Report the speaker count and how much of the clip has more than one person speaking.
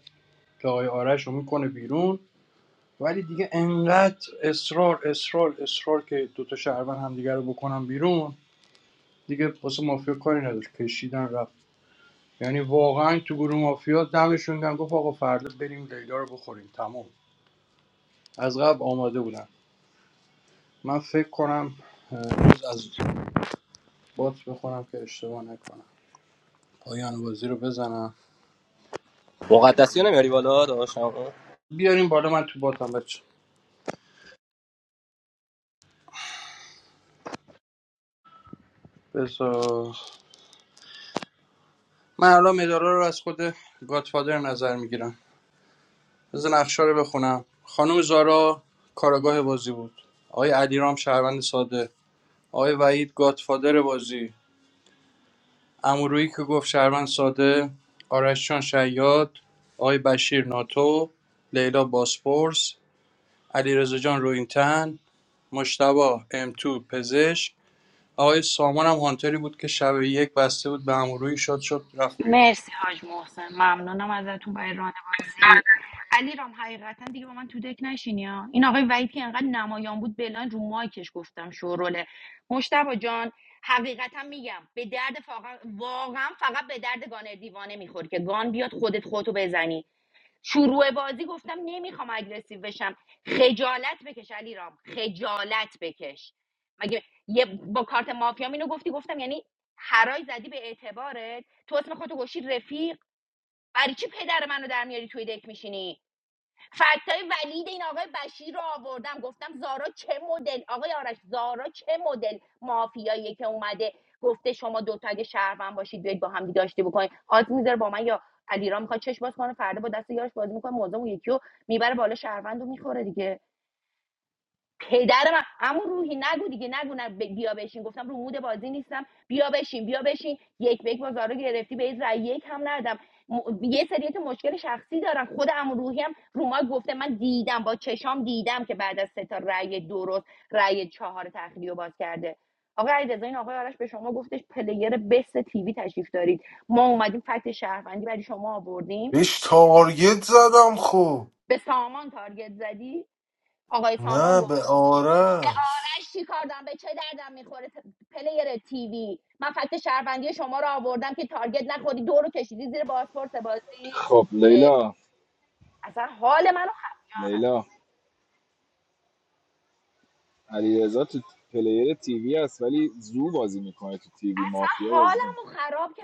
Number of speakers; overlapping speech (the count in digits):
5, about 1%